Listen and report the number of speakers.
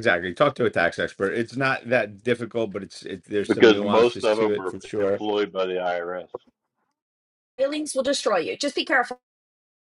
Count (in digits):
3